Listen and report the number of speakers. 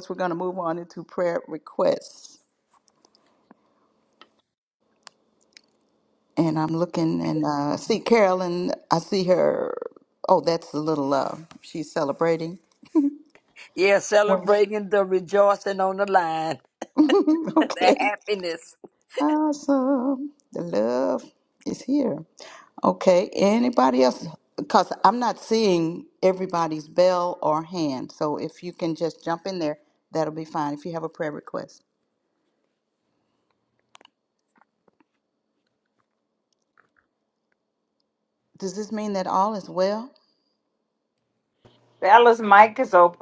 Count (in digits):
3